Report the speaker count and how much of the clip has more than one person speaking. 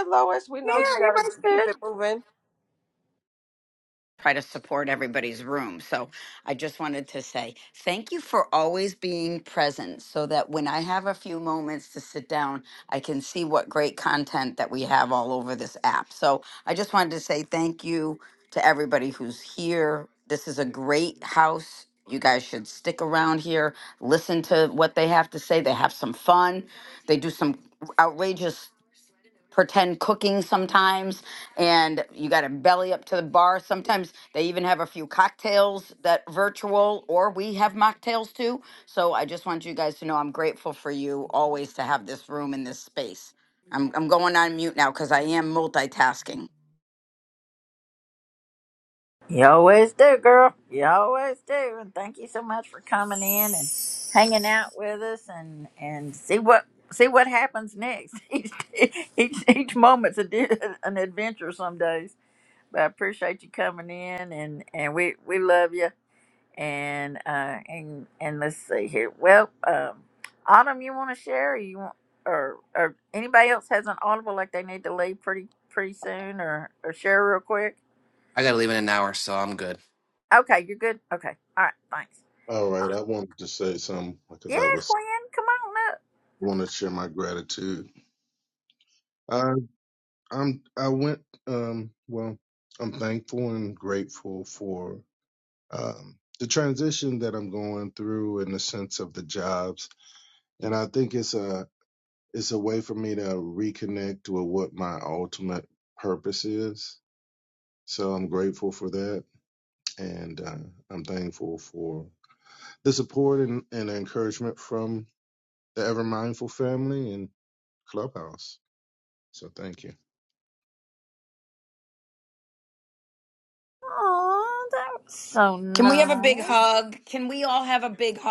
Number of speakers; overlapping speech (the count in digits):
5, about 2%